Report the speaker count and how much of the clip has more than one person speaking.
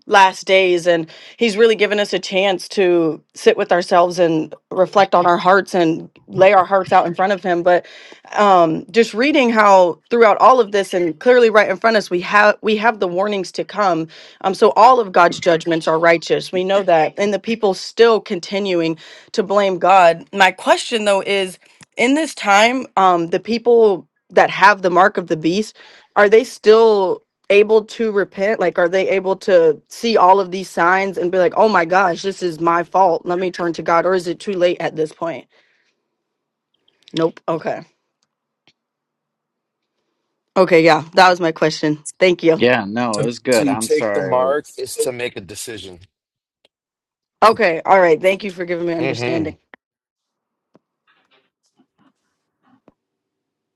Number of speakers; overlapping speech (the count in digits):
3, about 4%